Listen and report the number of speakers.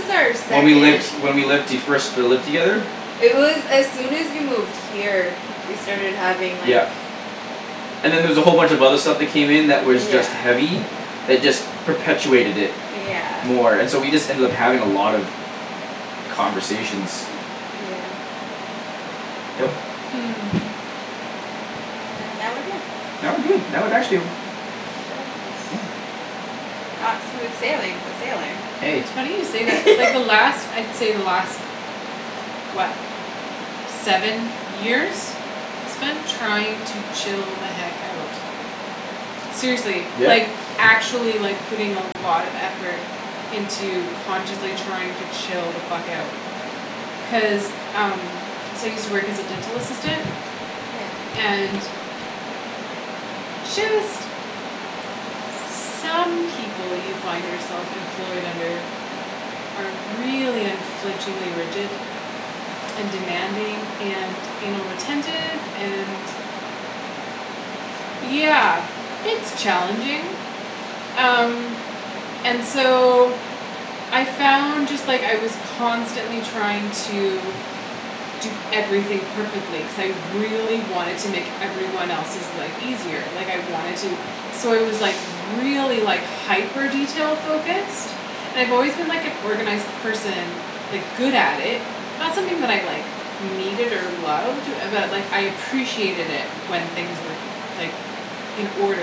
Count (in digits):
3